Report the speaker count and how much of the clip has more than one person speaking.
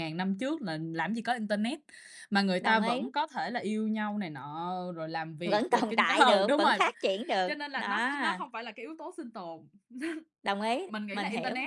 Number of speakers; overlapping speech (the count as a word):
two, about 29%